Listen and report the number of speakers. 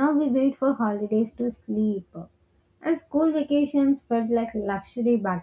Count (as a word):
one